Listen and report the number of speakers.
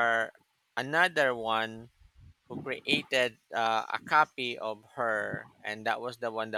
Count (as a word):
one